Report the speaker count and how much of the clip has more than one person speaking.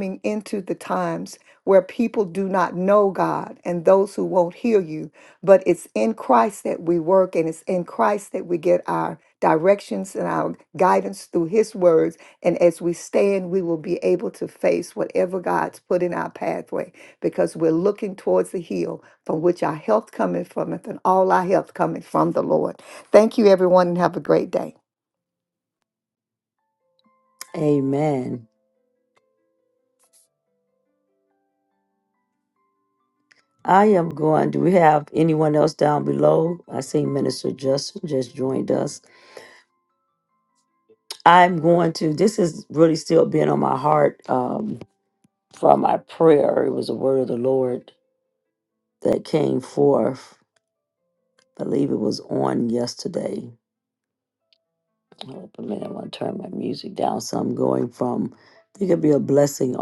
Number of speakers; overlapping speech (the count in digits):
2, no overlap